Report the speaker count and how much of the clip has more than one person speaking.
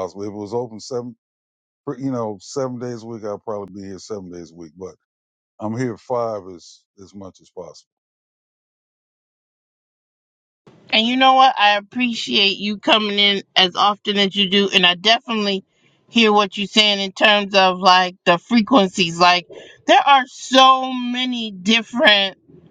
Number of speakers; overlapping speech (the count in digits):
2, no overlap